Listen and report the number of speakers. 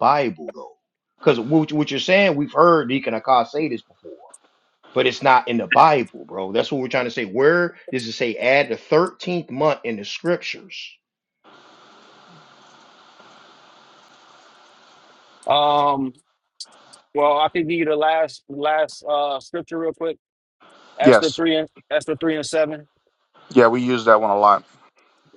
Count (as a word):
three